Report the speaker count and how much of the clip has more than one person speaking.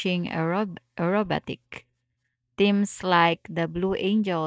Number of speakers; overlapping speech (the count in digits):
1, no overlap